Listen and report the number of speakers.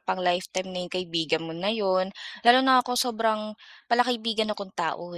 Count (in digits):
1